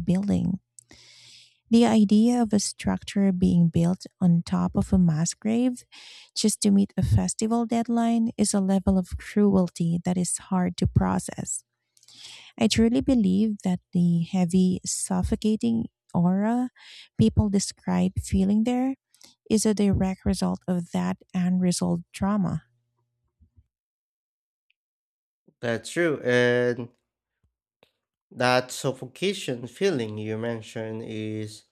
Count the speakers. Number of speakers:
2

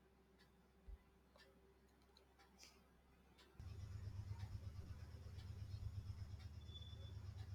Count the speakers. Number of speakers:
0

